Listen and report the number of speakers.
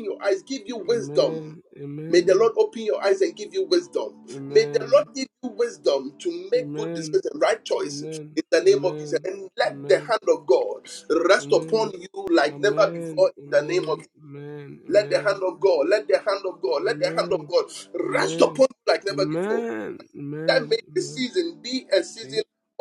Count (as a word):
two